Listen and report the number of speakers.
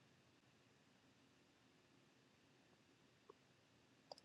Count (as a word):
zero